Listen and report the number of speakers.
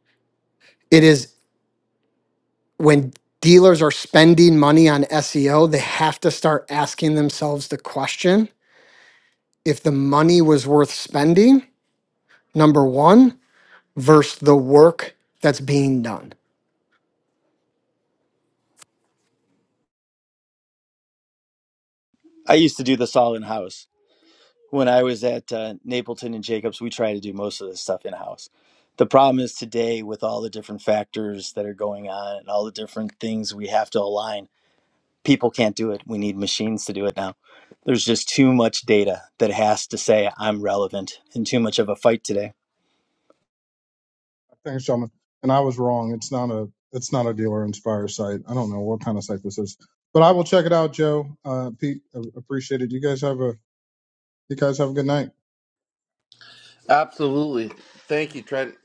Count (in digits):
4